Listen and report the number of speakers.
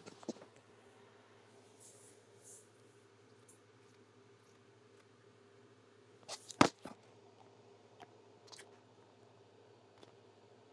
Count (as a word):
zero